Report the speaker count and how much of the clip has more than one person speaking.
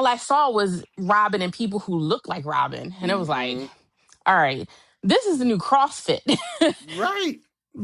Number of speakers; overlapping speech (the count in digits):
2, about 8%